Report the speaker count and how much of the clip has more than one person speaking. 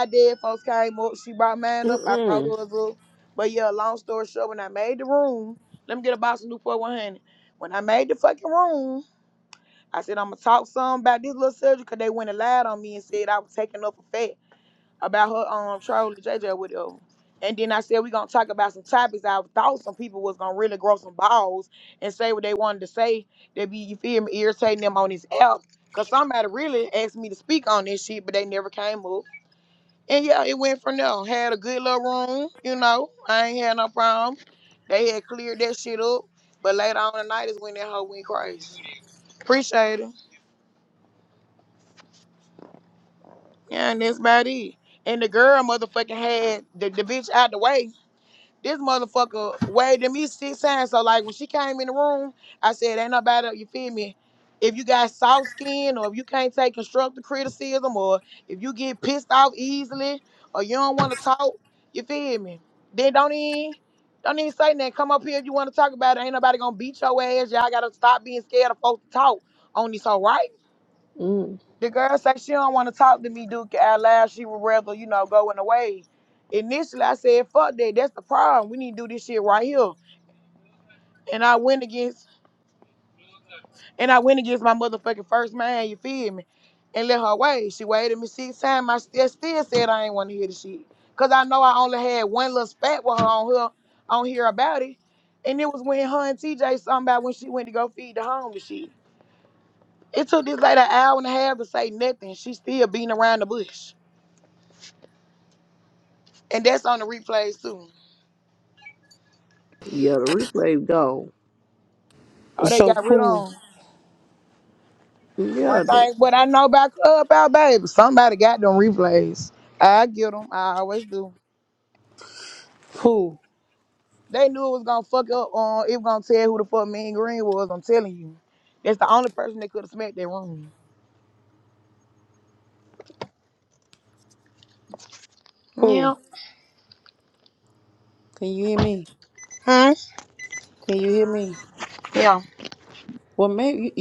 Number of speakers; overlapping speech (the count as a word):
three, about 2%